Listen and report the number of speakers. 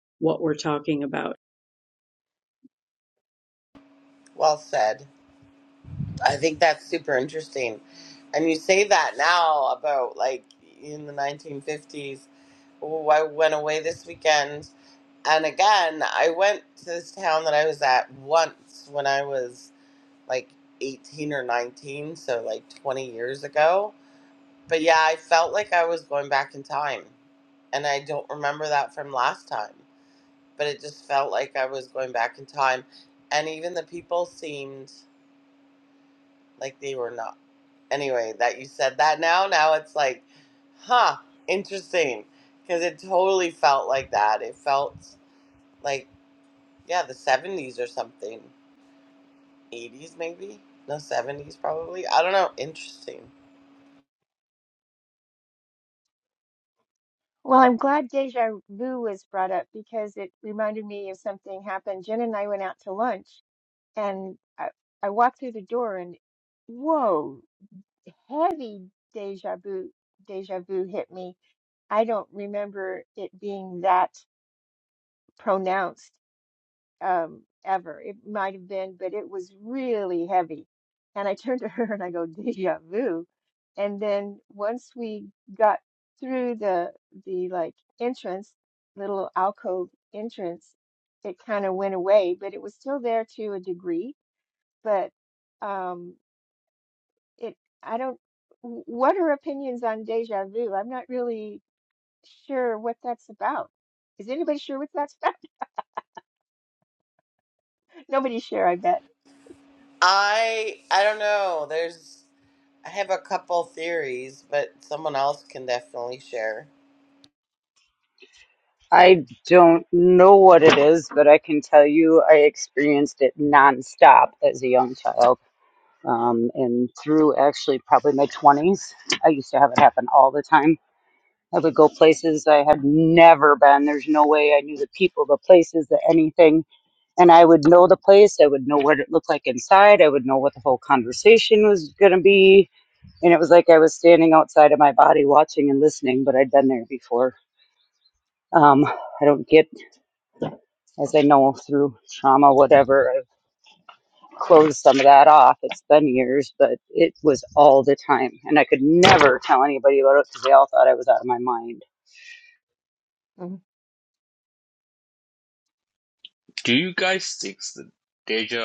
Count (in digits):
5